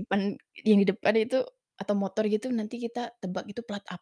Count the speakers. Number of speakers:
1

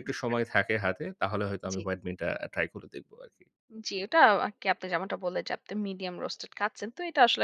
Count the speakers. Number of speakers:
2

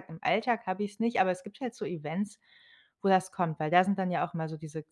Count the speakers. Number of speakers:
1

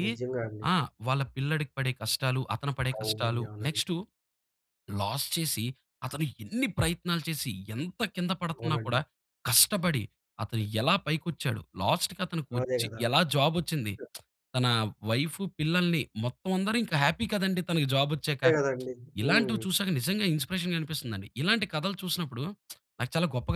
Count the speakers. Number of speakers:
2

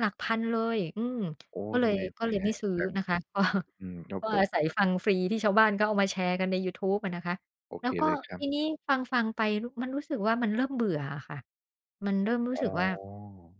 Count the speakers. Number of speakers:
2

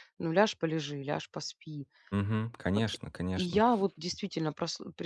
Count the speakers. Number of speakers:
2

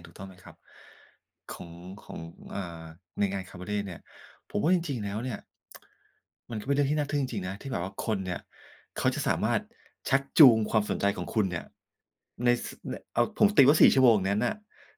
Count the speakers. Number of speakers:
1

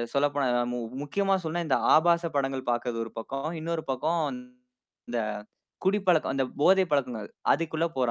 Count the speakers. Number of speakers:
1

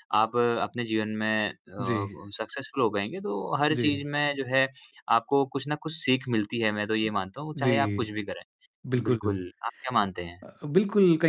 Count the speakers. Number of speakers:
2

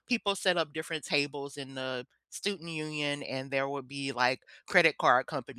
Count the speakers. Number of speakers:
1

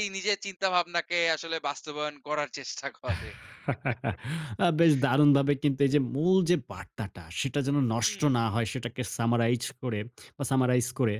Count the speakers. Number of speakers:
2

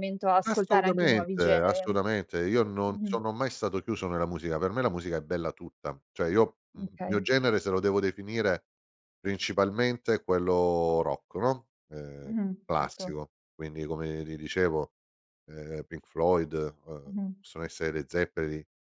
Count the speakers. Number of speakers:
2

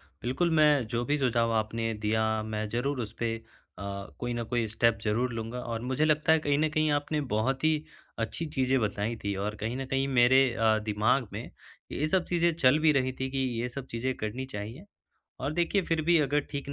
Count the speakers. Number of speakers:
1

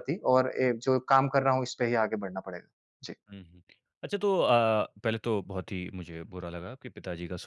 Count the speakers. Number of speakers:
2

